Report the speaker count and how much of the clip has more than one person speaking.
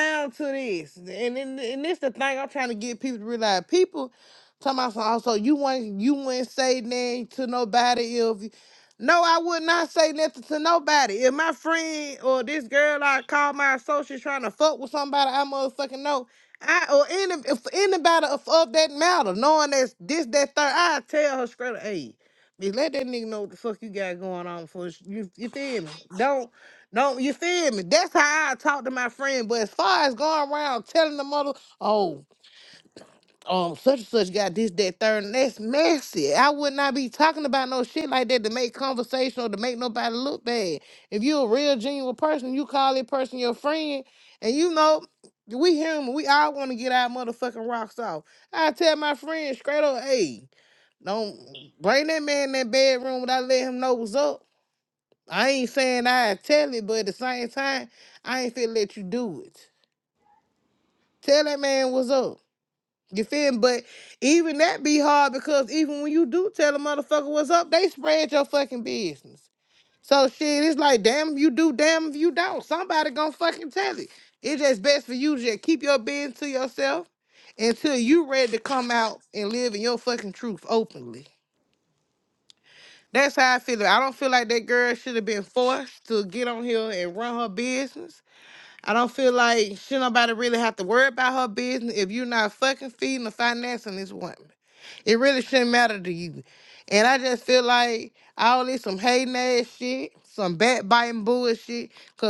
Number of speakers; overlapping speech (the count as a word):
one, no overlap